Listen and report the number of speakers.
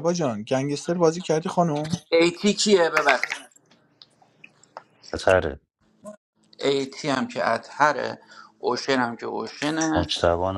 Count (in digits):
3